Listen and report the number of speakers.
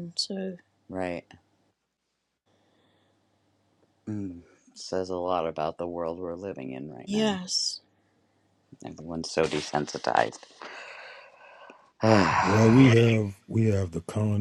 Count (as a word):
three